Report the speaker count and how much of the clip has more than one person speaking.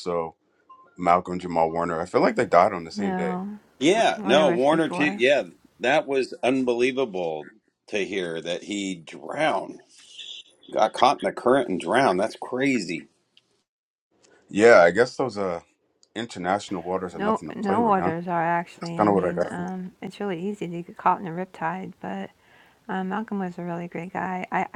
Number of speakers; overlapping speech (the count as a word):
three, about 13%